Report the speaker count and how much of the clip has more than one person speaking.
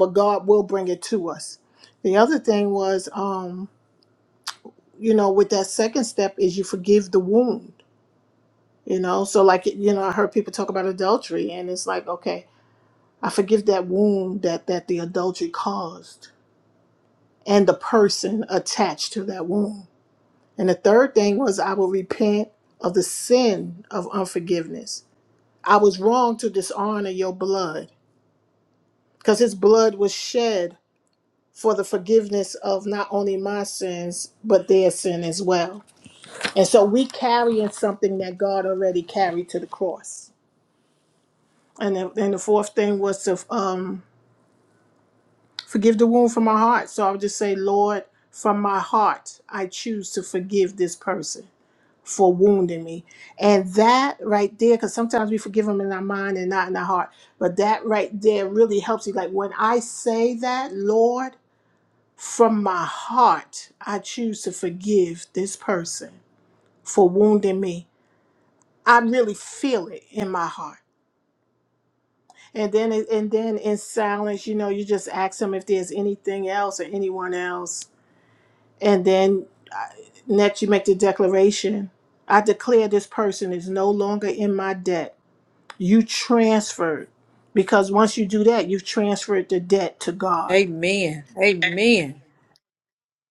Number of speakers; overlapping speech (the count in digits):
2, under 1%